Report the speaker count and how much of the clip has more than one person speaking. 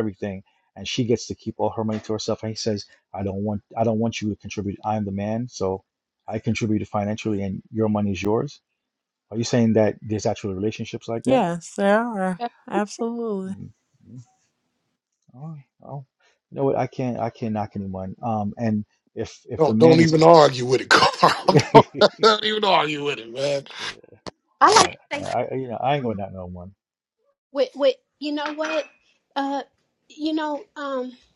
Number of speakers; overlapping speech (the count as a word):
four, about 3%